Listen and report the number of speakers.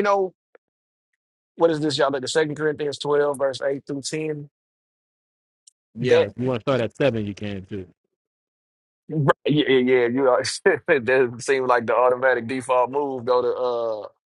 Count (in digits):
2